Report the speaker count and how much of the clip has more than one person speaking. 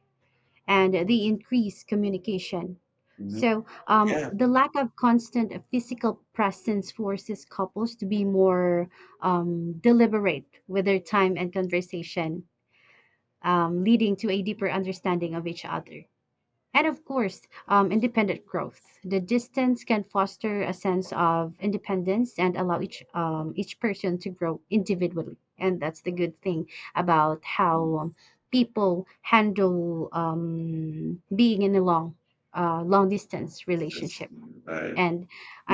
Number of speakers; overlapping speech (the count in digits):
2, about 3%